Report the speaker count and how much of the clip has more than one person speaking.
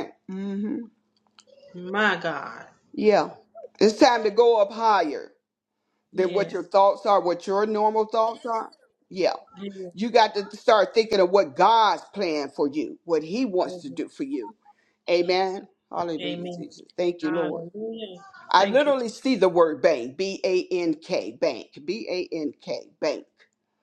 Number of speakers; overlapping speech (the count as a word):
two, about 7%